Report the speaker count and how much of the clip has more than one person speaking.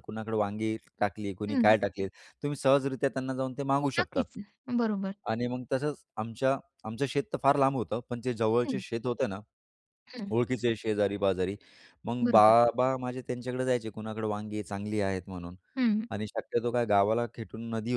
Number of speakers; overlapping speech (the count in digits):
2, about 6%